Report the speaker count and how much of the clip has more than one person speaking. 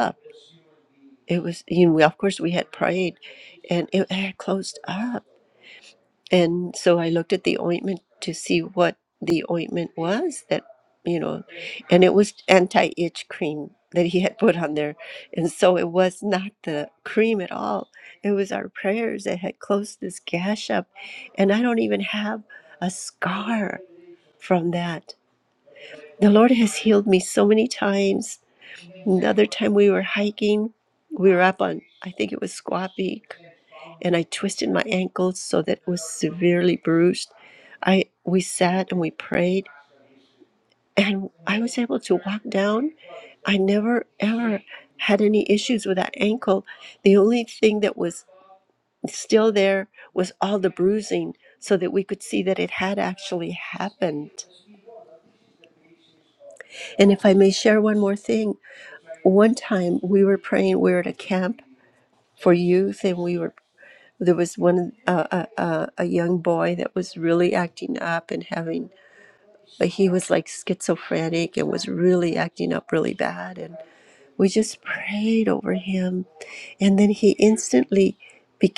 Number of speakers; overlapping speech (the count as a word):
one, no overlap